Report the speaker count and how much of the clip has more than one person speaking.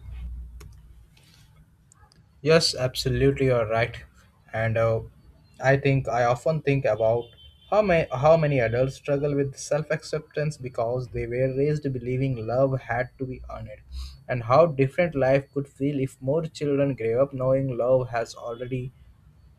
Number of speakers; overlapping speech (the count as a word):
one, no overlap